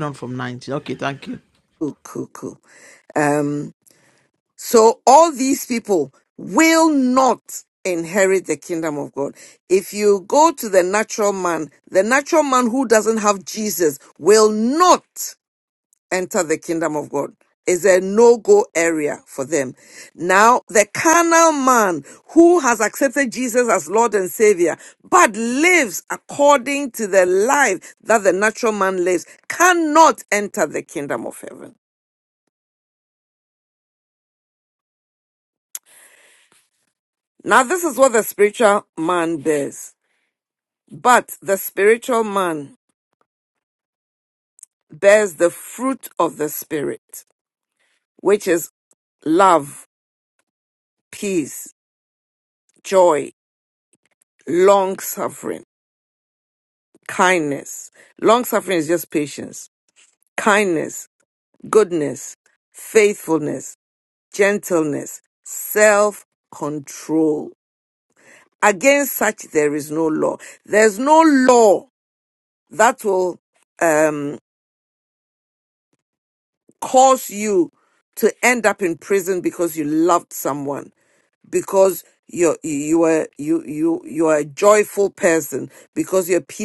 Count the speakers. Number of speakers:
two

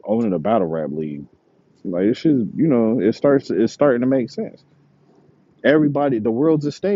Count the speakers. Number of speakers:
one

